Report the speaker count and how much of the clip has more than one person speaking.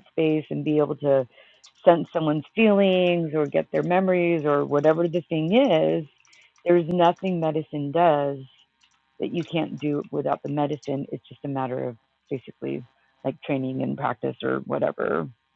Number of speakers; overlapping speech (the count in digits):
1, no overlap